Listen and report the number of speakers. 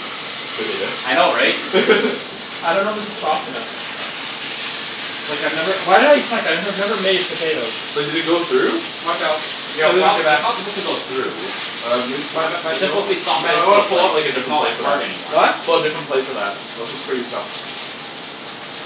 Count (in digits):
4